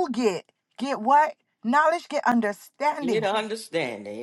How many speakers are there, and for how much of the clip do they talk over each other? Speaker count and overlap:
2, about 5%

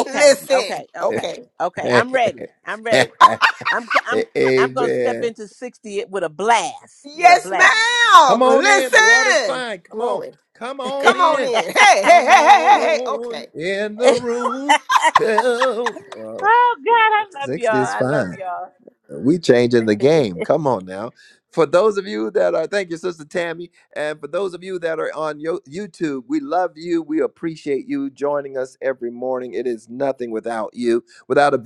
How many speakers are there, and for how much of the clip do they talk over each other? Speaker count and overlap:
3, about 22%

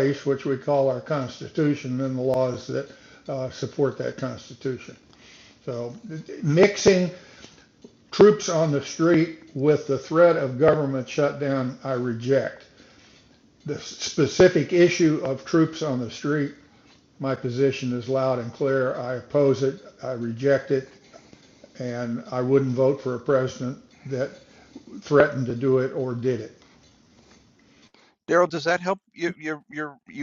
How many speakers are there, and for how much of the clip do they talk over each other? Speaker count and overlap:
2, no overlap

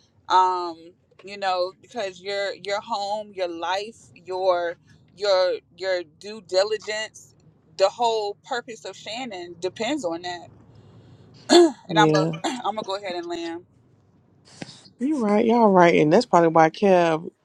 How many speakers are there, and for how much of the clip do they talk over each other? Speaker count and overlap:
2, about 3%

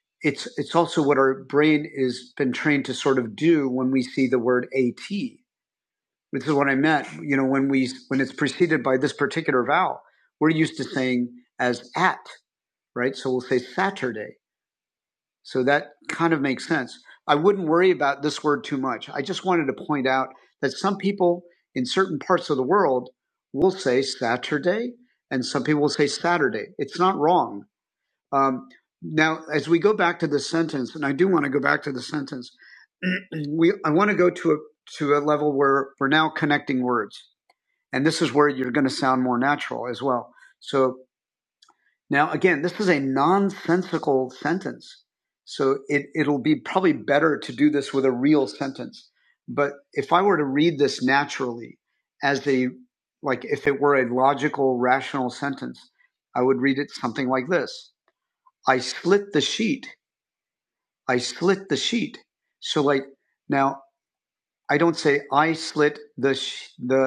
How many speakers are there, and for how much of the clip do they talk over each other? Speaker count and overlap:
1, no overlap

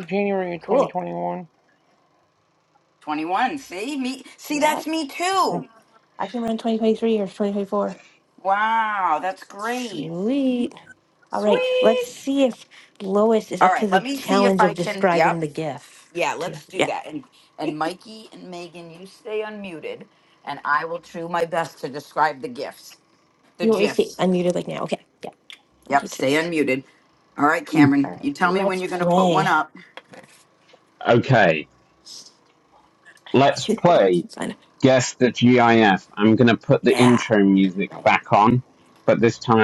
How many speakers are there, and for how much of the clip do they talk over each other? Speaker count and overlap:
4, about 17%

